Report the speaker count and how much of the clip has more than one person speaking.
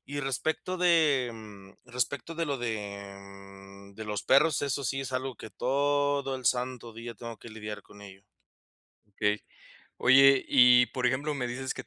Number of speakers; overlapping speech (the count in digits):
2, no overlap